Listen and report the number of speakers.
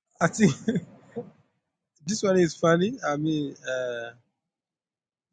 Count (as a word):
one